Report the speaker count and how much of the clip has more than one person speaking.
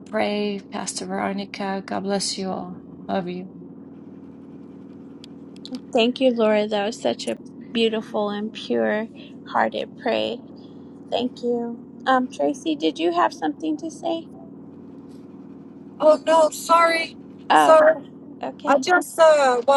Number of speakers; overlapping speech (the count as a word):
three, about 2%